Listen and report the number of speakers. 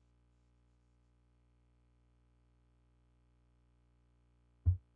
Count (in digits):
0